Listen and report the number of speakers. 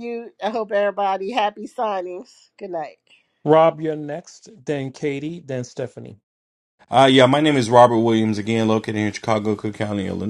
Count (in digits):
3